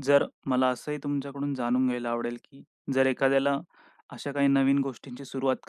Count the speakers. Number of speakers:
one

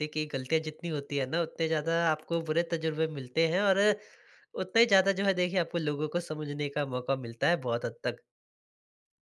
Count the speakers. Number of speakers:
one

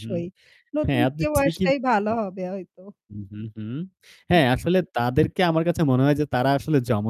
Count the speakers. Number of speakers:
two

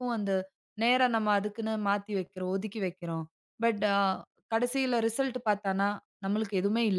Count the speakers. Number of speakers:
one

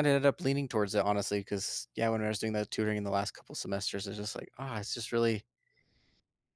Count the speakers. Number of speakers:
one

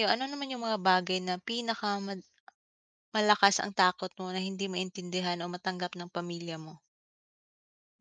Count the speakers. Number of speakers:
one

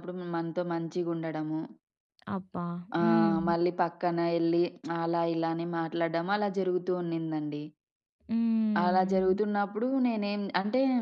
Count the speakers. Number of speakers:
two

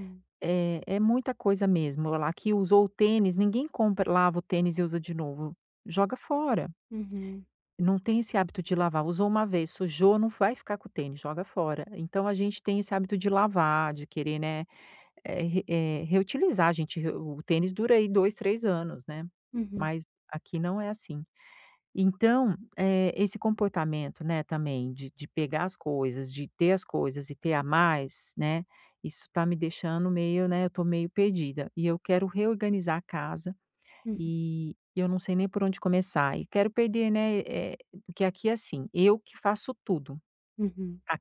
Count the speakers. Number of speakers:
two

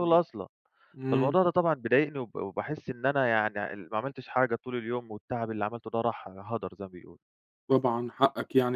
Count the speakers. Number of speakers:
two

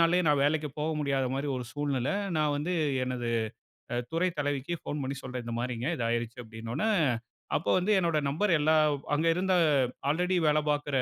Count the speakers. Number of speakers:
one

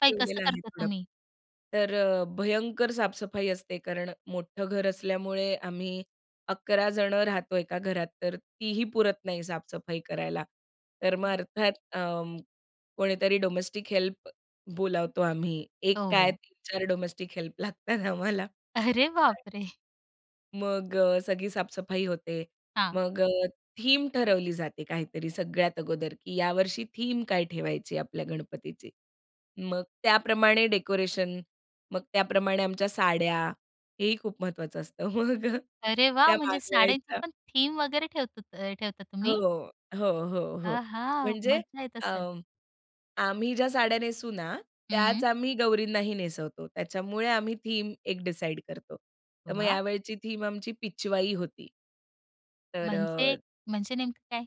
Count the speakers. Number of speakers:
two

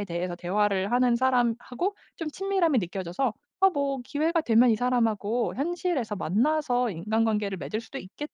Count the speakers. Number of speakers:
one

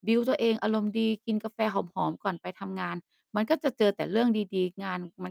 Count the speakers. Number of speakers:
one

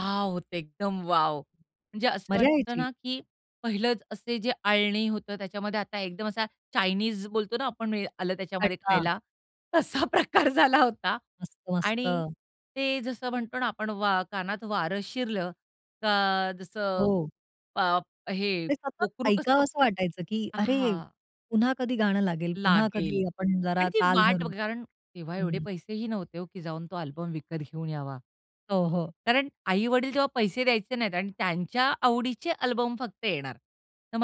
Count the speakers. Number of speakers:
two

